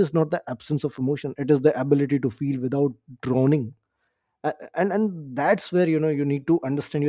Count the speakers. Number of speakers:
1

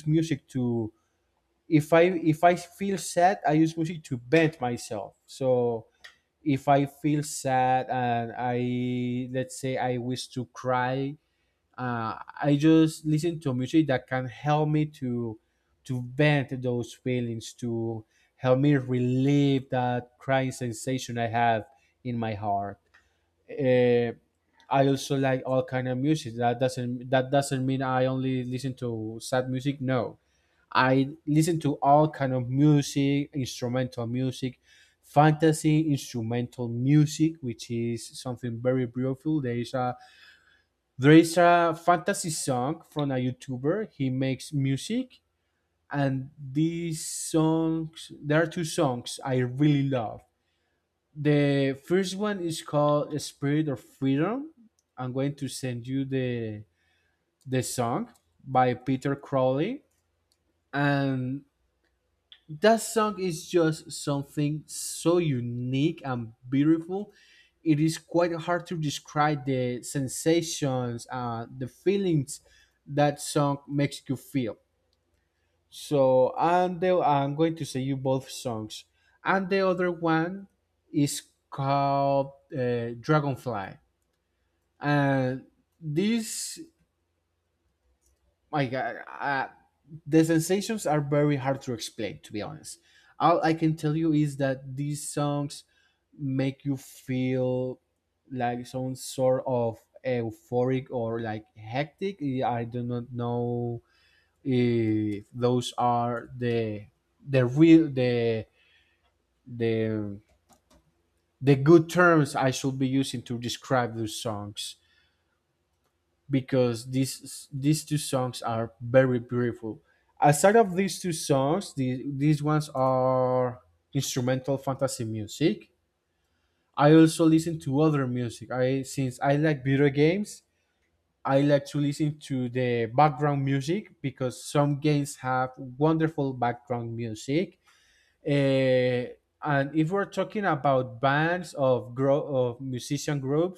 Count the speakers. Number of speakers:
1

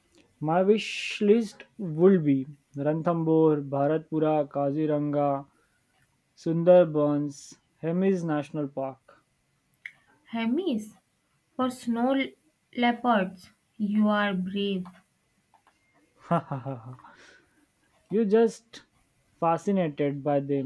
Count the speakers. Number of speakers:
2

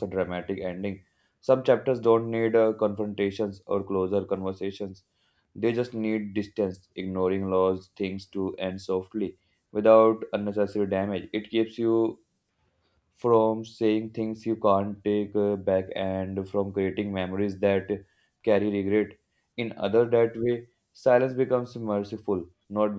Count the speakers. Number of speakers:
1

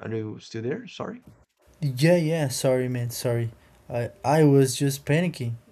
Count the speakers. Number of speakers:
2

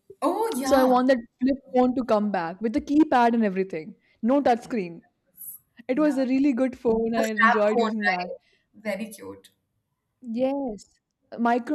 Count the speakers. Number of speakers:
2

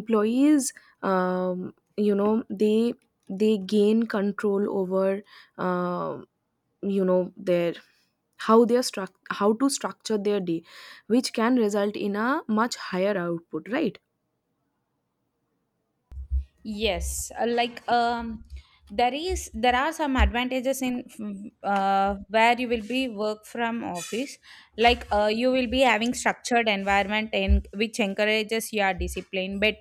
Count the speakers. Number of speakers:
2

